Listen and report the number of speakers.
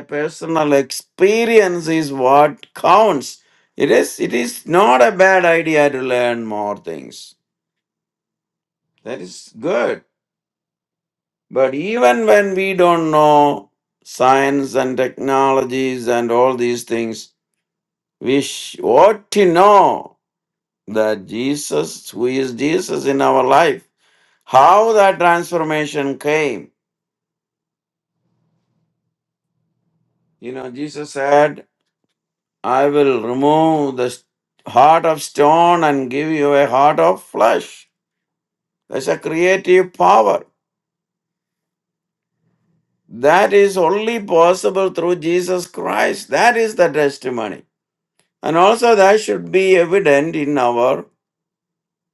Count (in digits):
1